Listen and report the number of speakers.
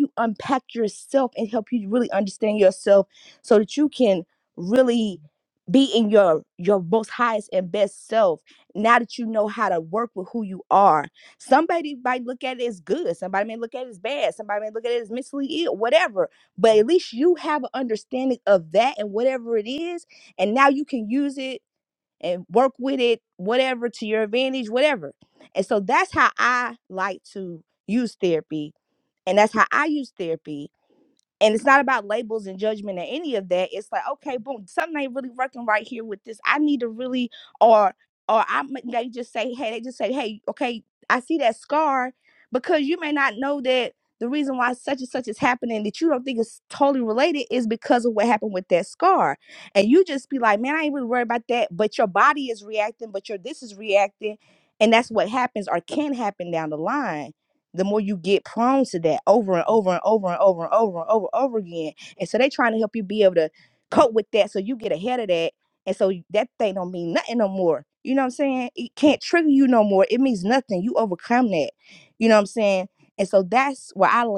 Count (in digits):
1